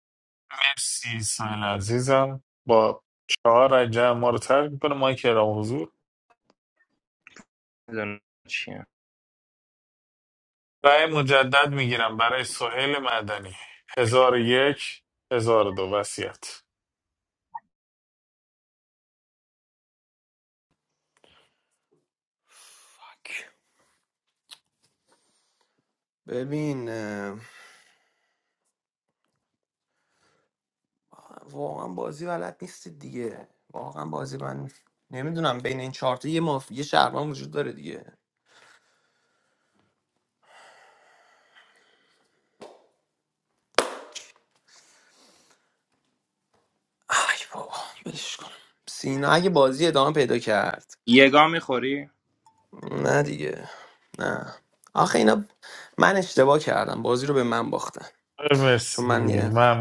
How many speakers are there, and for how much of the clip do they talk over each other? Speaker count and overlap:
3, about 1%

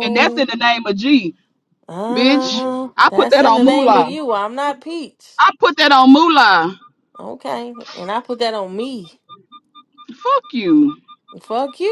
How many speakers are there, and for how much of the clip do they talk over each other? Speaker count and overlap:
2, about 16%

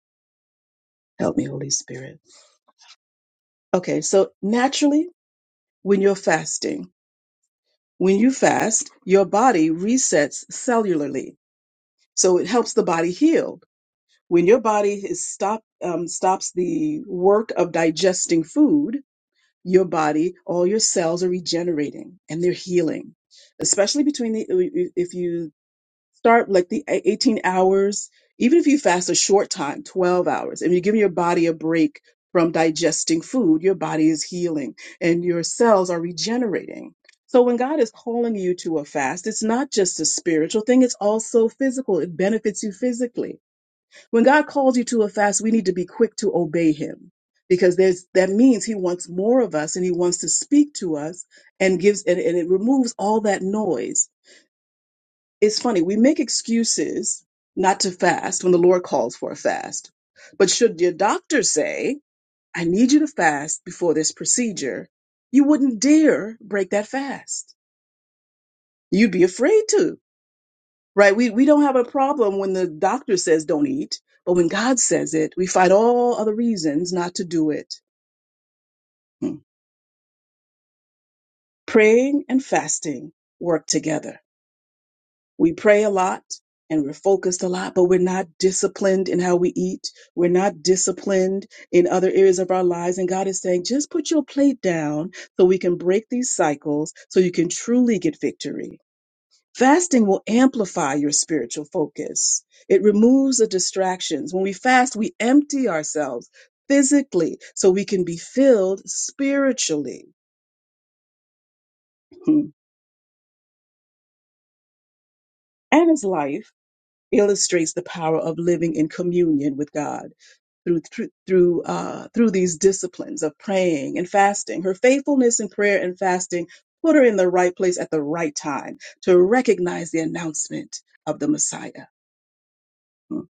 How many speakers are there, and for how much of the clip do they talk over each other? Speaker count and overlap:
1, no overlap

